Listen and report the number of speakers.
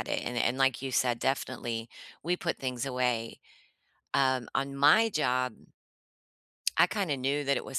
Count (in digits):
1